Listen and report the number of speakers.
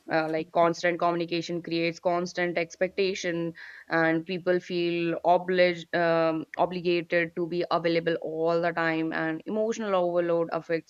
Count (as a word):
one